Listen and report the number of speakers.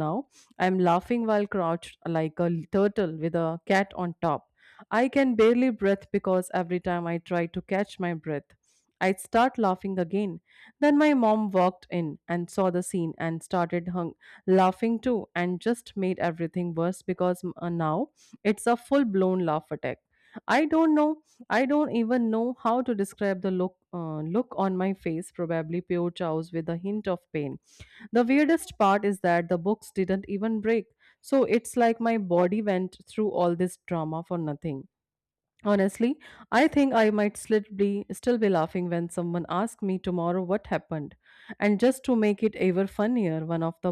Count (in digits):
1